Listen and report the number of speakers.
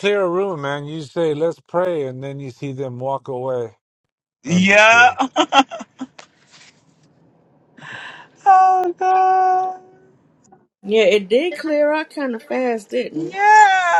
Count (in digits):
3